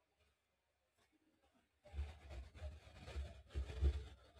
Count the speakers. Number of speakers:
0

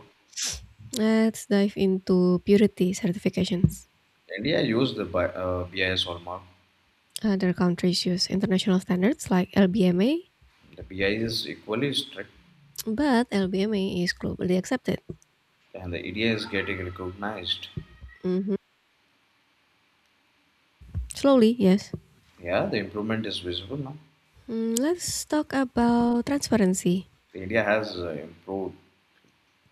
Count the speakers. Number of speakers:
2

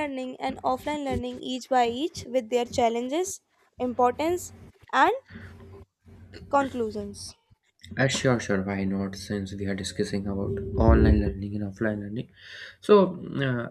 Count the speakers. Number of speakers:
2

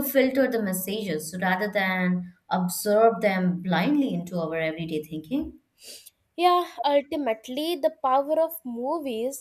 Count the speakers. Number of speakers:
2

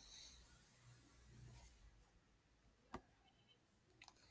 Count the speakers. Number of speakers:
0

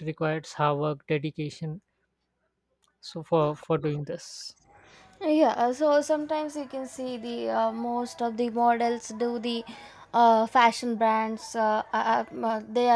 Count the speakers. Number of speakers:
2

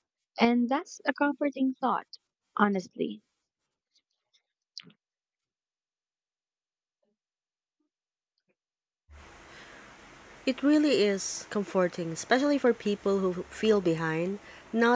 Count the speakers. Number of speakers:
2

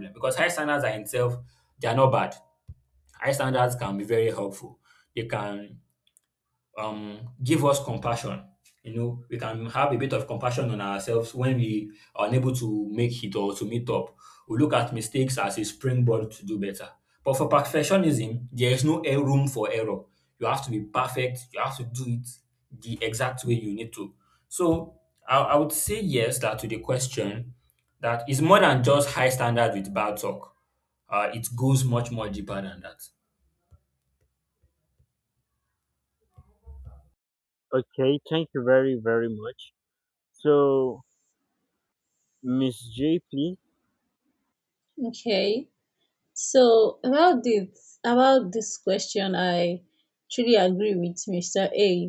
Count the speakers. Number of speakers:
3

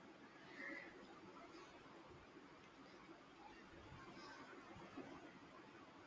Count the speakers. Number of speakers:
0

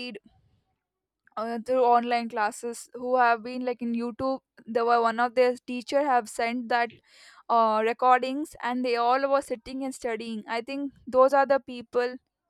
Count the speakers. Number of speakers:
1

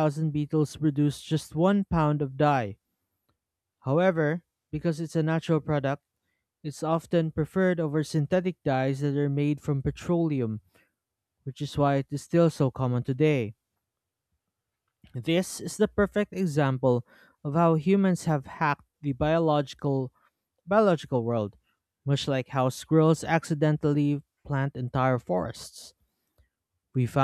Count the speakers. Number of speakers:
1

